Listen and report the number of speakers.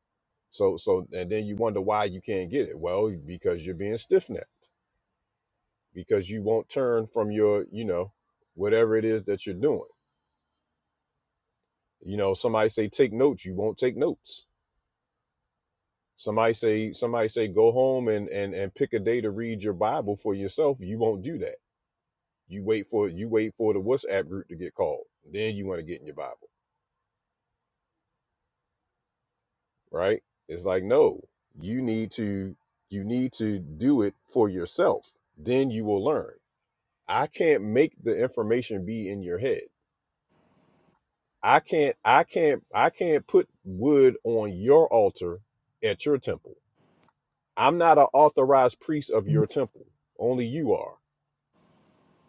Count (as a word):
one